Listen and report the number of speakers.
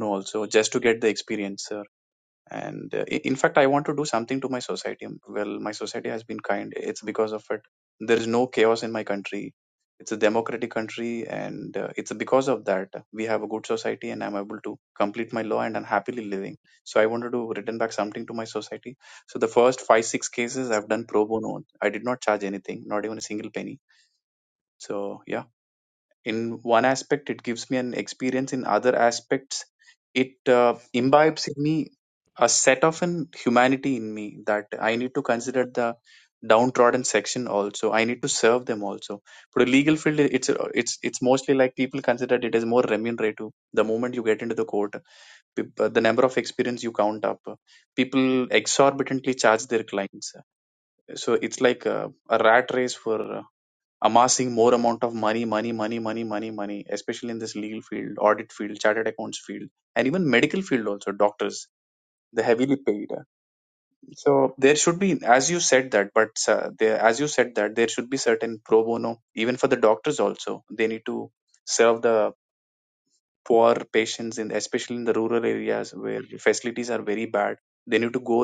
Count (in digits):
1